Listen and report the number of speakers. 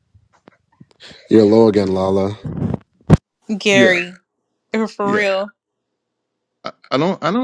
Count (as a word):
three